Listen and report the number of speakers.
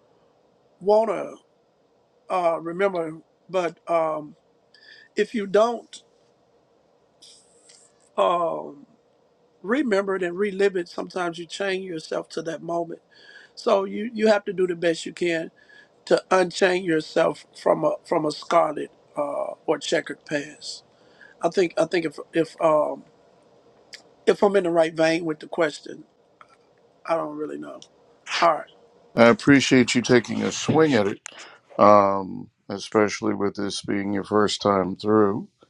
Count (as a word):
two